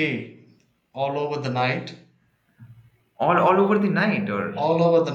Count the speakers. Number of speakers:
two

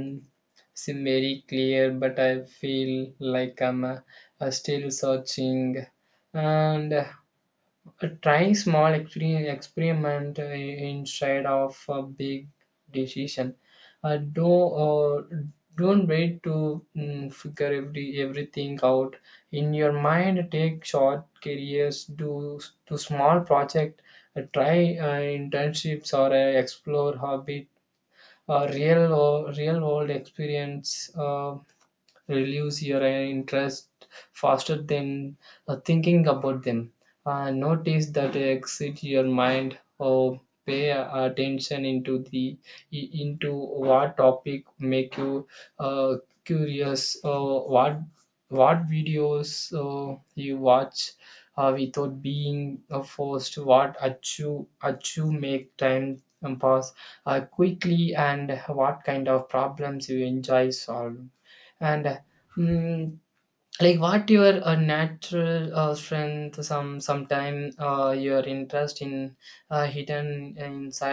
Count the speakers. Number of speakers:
one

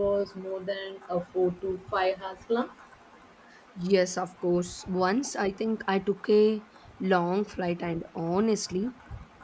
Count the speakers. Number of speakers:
two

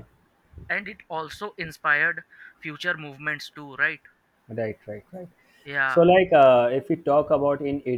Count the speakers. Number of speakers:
two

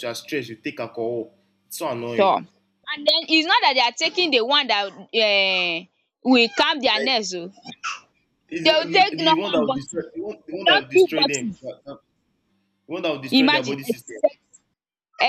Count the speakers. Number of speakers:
two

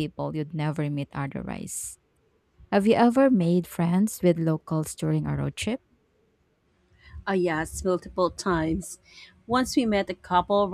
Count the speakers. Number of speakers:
two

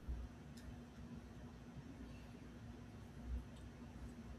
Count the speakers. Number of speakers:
zero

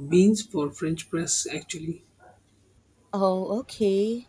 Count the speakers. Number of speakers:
two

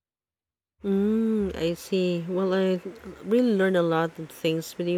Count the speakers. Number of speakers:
one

